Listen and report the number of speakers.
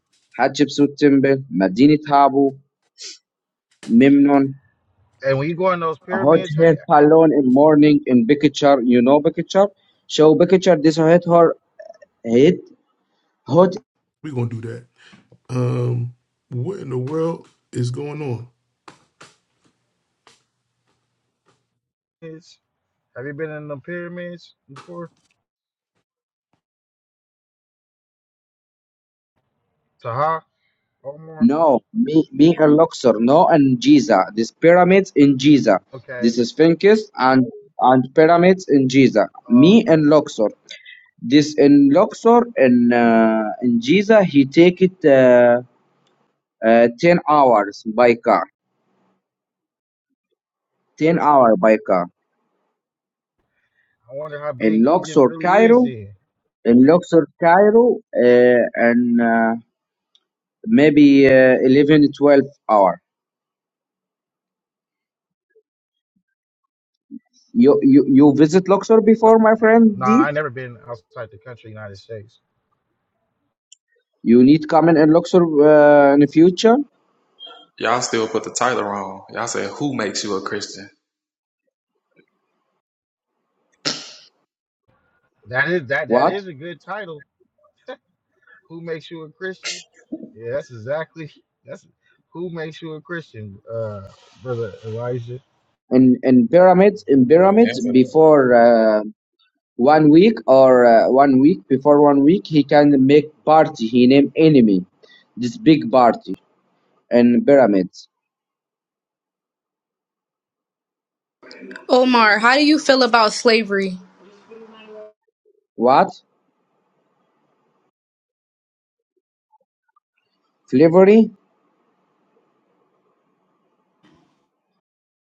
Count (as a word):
five